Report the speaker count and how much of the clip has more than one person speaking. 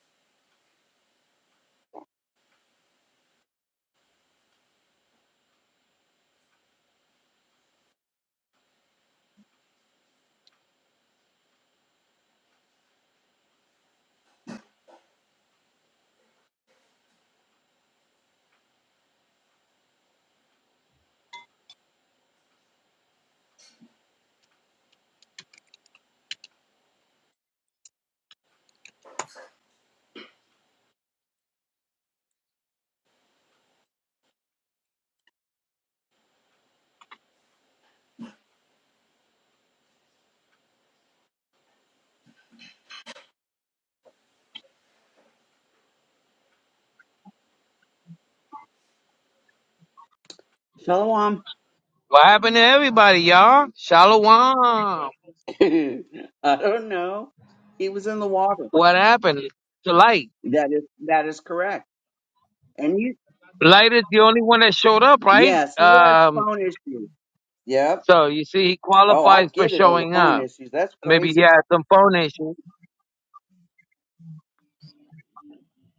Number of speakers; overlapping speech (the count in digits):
2, about 4%